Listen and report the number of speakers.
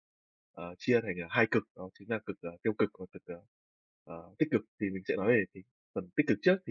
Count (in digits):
1